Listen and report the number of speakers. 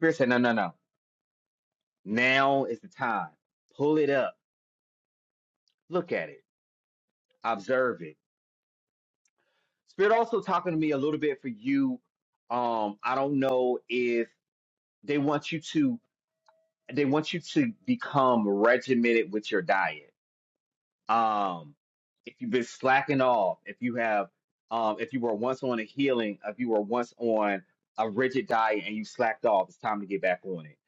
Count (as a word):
one